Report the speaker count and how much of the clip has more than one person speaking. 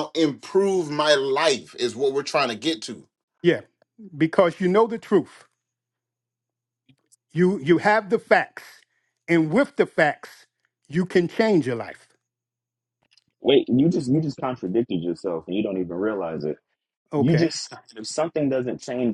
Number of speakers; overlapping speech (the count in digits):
3, about 2%